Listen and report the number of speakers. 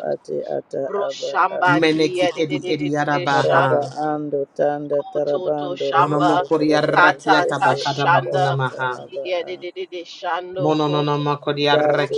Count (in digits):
3